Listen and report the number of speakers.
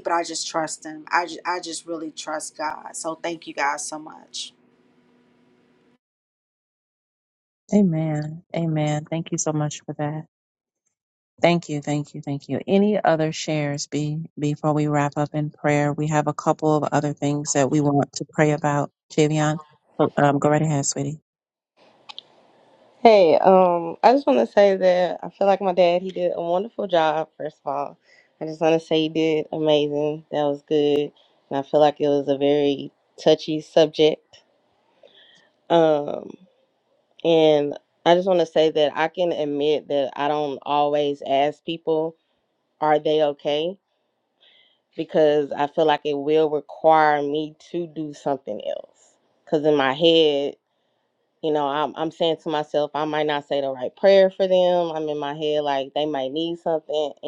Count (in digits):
3